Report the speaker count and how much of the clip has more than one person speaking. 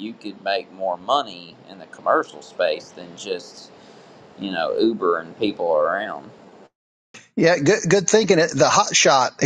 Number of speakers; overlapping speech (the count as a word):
two, no overlap